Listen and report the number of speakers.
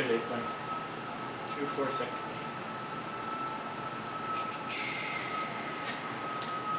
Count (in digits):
1